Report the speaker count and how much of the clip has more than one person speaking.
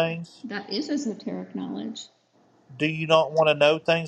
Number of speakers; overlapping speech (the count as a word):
two, about 5%